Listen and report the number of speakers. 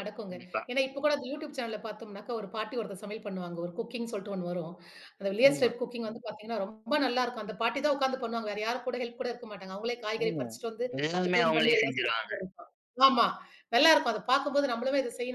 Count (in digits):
2